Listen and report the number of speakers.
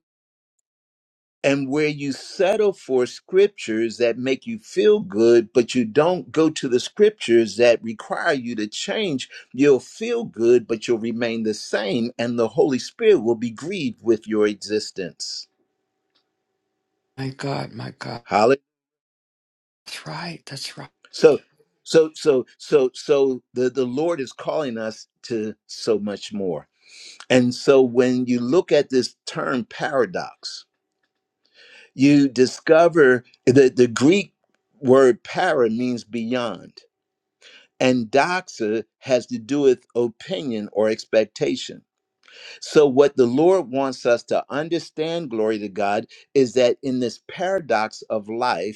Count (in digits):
2